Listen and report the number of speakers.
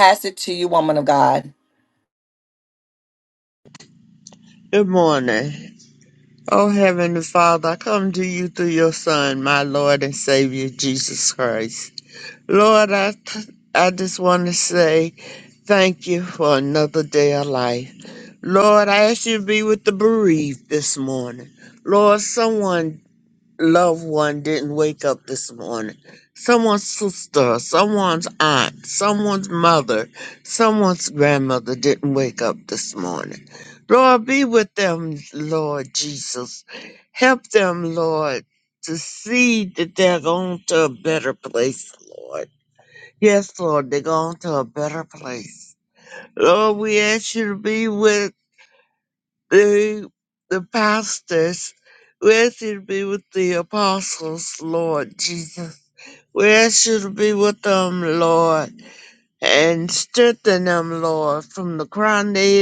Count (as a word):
two